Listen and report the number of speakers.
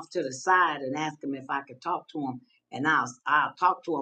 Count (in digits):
1